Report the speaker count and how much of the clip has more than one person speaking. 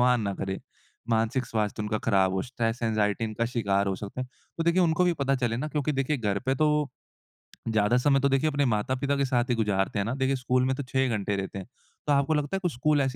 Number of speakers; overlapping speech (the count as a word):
one, no overlap